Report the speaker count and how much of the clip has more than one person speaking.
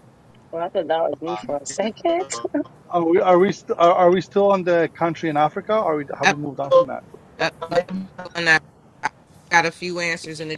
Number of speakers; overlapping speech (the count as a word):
three, about 1%